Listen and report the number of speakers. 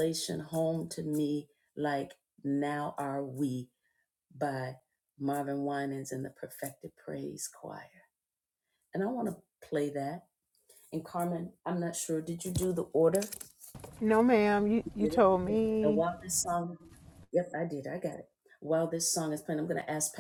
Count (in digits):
2